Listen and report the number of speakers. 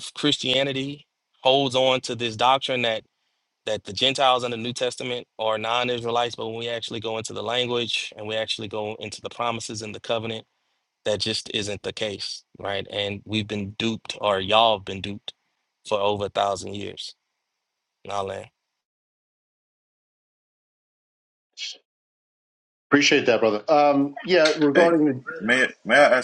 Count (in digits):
3